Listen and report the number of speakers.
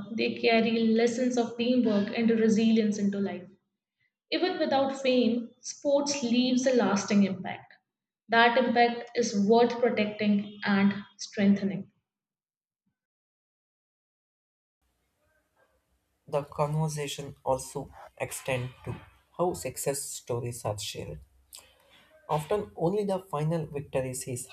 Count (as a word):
two